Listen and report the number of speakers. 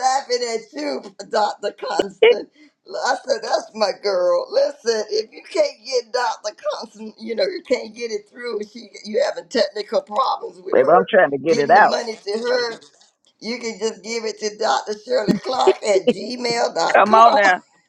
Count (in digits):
2